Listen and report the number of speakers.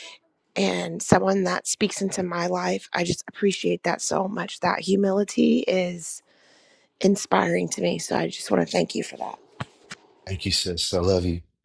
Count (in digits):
2